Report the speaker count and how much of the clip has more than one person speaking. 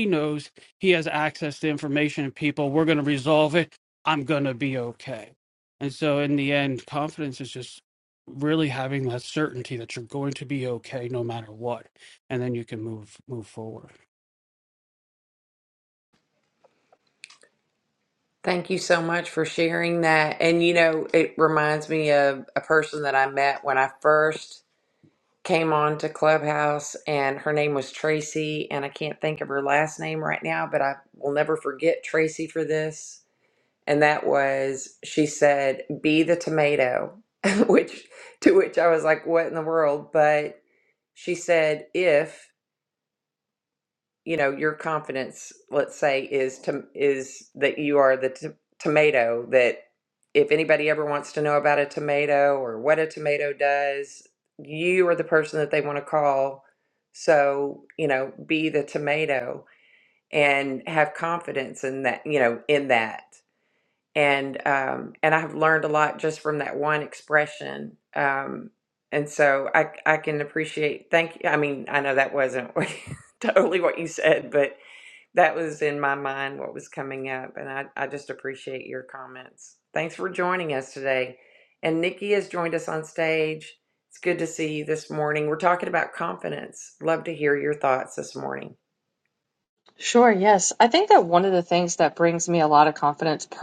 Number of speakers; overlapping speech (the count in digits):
3, no overlap